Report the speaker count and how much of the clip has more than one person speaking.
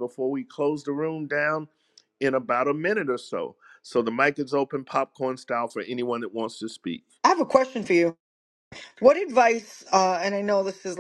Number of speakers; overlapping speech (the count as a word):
two, no overlap